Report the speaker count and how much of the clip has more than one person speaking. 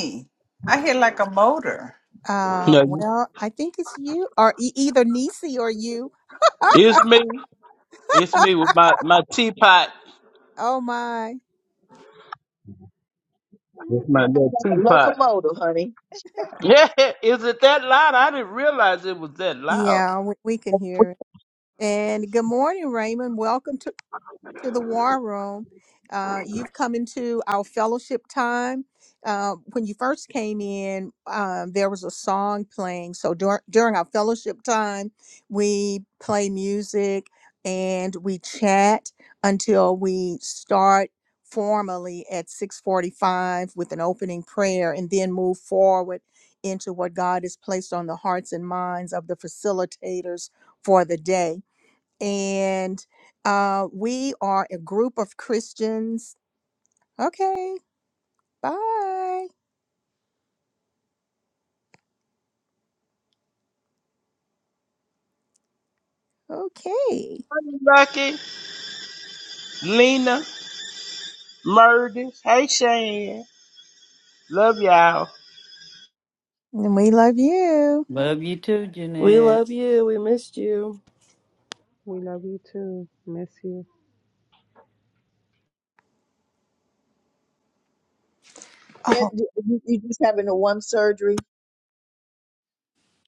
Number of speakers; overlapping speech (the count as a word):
seven, about 2%